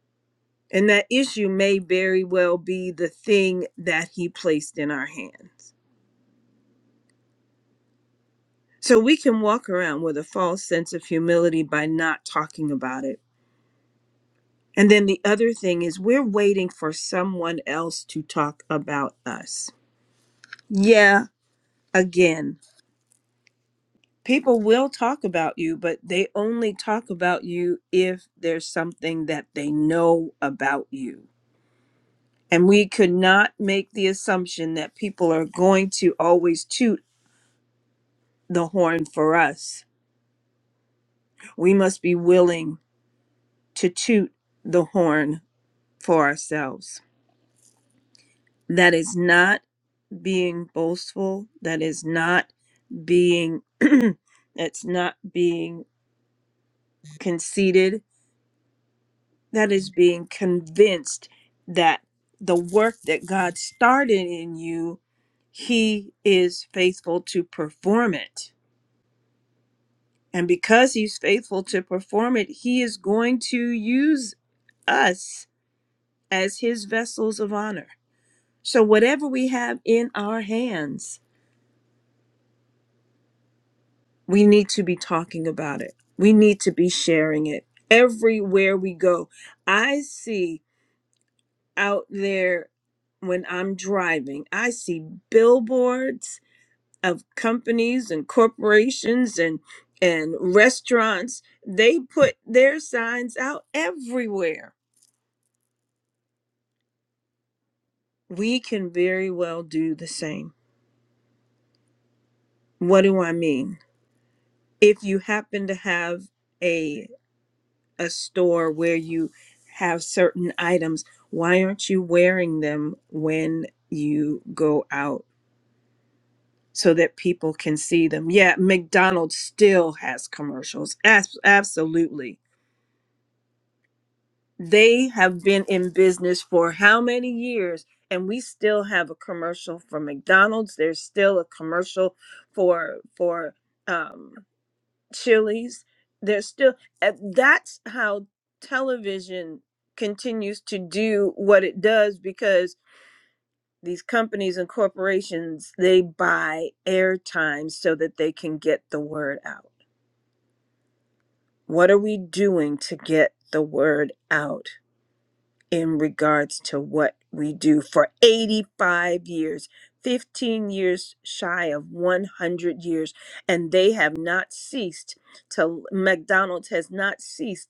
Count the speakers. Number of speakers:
1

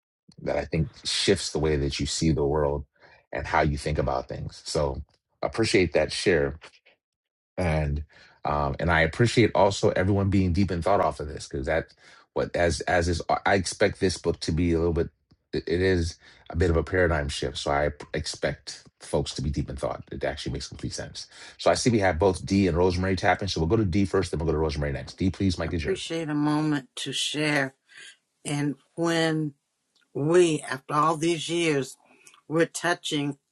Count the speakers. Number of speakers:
2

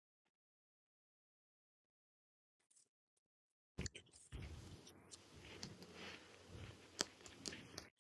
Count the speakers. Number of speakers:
0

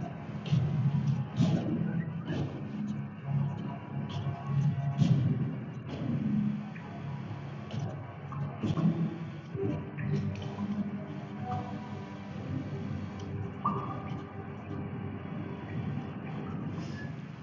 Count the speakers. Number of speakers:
0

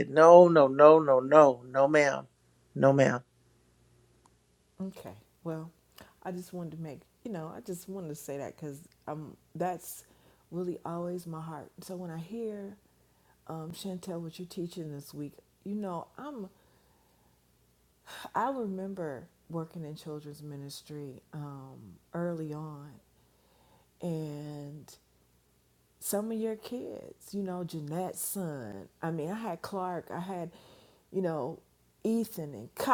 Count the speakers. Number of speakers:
2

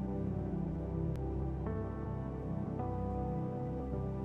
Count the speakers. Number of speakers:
0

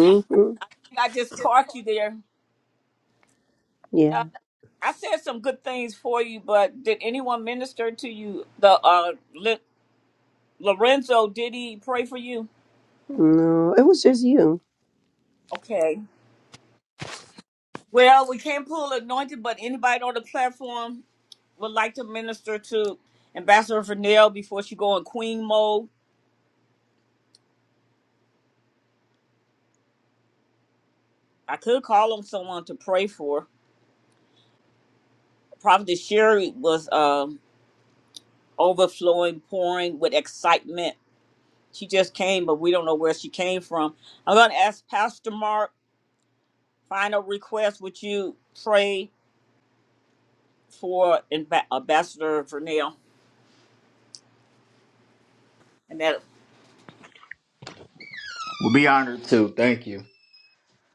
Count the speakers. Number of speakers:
3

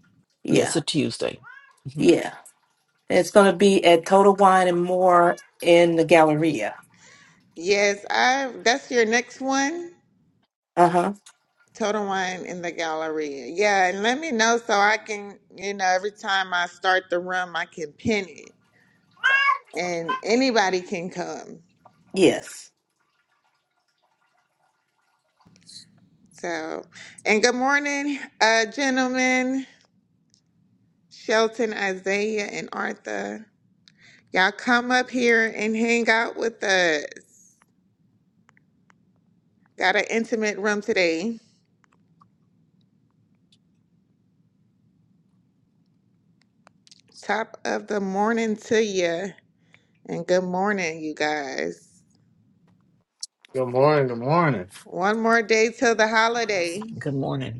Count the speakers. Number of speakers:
4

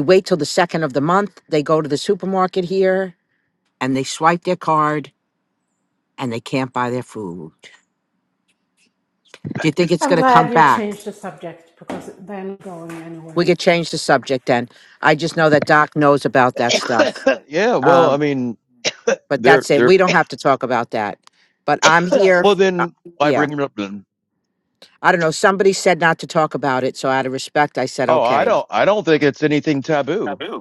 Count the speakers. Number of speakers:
3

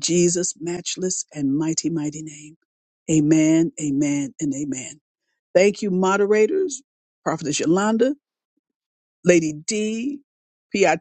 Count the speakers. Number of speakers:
1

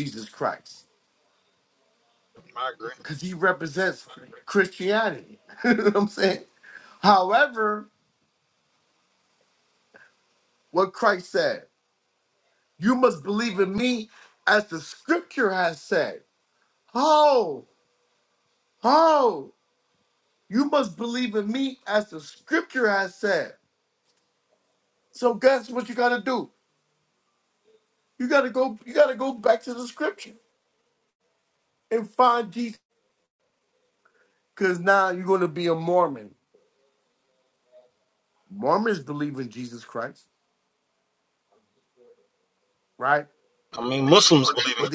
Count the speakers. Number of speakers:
2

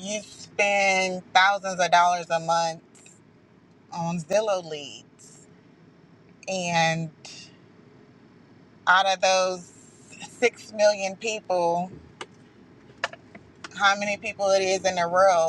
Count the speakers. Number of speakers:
1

